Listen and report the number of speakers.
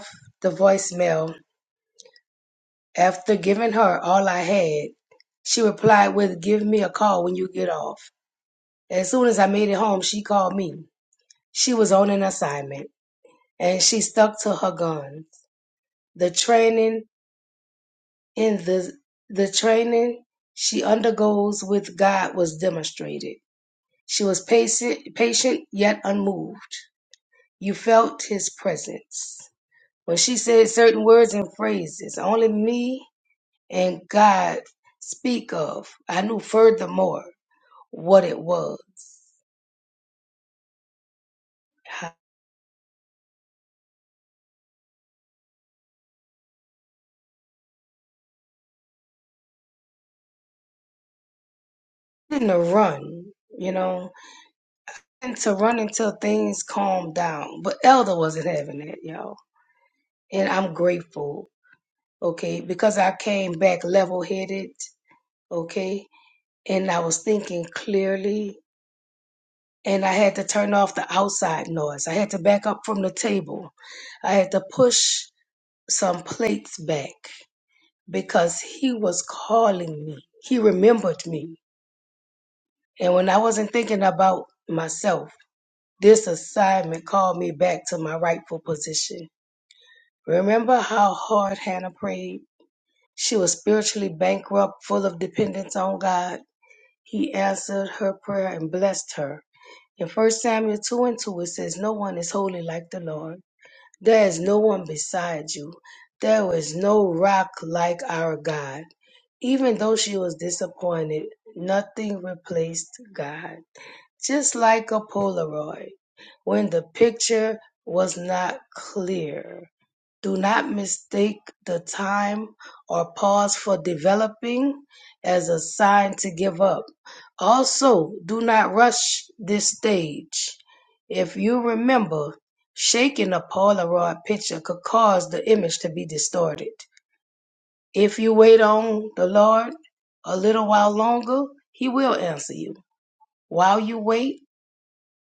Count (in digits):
1